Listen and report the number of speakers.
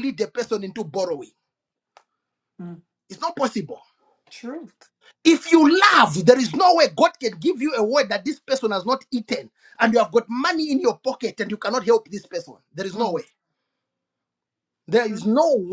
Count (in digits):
2